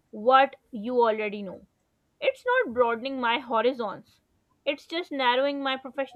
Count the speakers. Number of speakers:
1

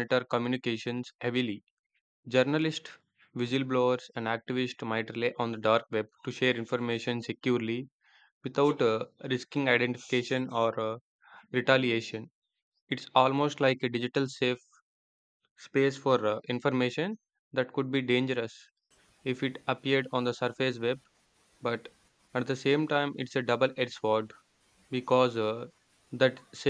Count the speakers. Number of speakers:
1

